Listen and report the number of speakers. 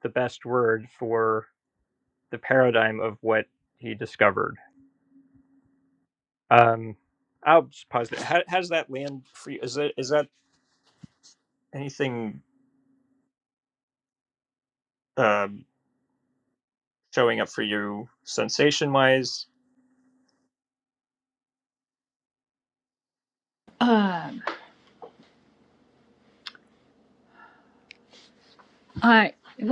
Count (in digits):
2